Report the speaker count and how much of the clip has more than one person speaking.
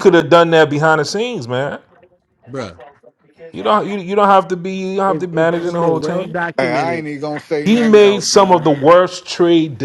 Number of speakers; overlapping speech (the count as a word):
three, about 28%